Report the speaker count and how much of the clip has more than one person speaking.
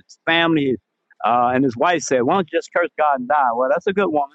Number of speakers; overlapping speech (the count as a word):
one, no overlap